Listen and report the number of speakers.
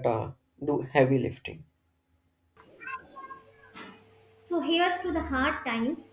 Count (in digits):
2